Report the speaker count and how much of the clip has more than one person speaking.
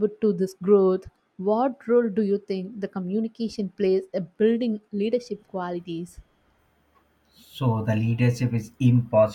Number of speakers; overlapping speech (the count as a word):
two, no overlap